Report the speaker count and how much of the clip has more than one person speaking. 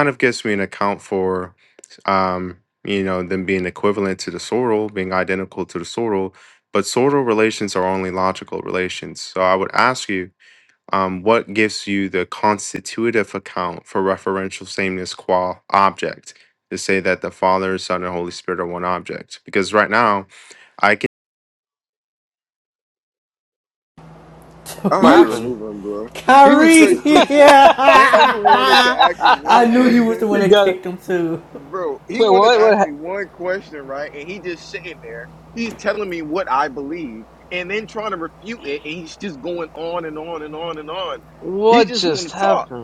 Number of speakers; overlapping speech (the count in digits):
4, about 11%